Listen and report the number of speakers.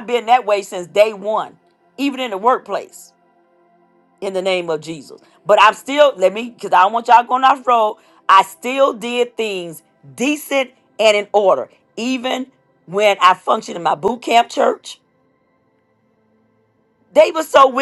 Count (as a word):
one